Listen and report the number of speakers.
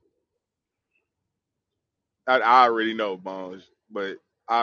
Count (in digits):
1